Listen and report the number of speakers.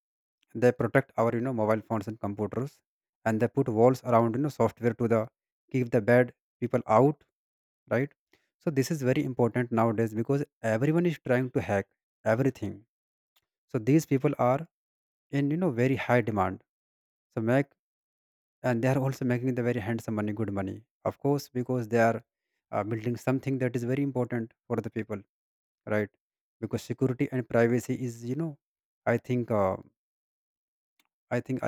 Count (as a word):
one